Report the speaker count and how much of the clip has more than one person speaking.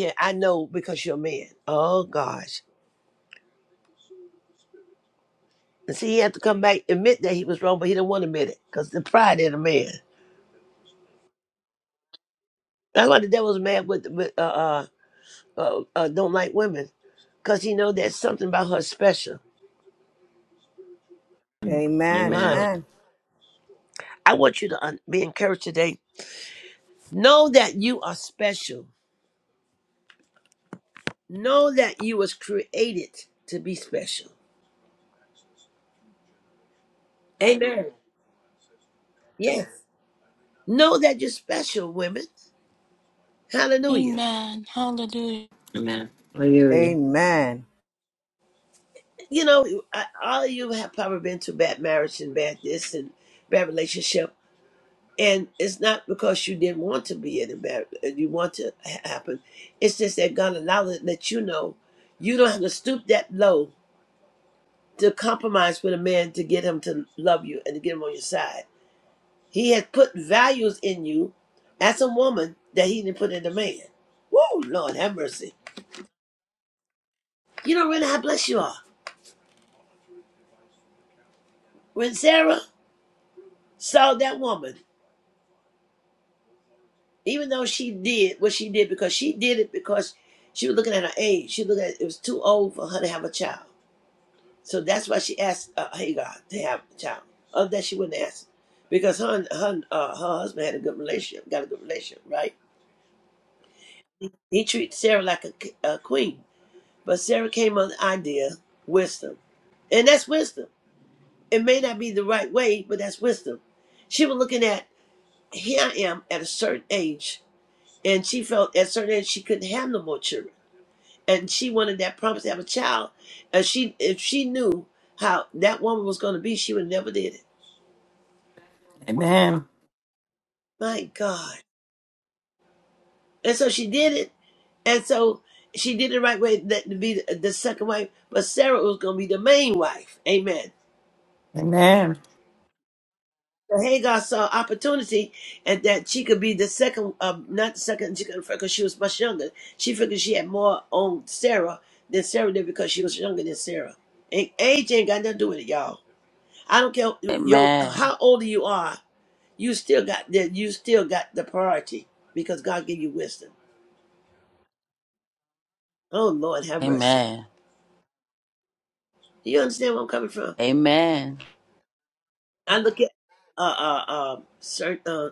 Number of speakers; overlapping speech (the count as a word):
five, about 1%